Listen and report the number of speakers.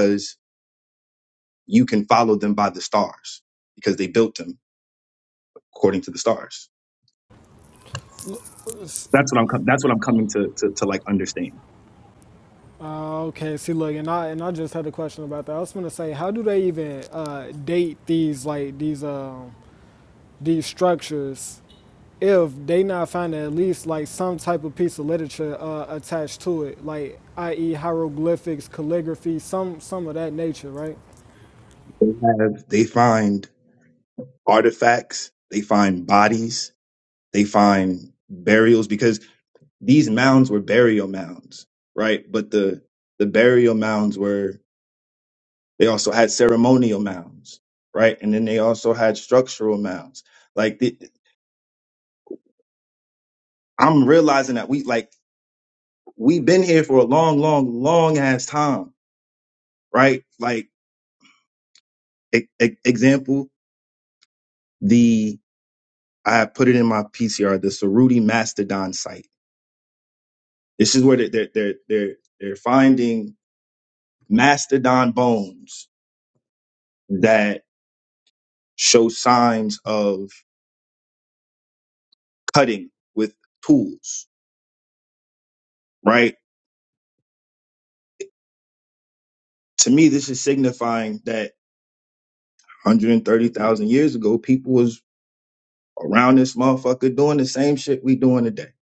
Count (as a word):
two